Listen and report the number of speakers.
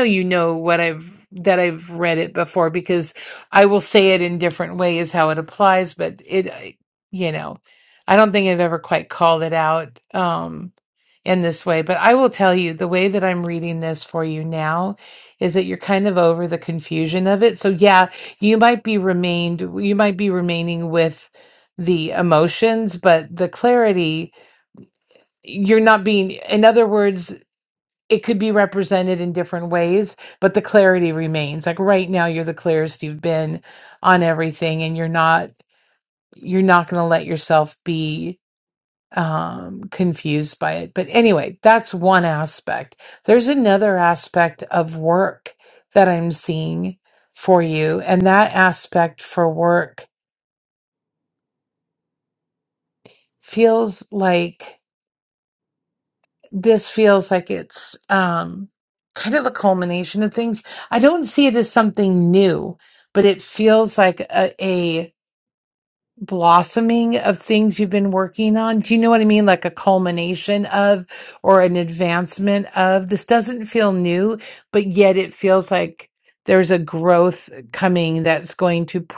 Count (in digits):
1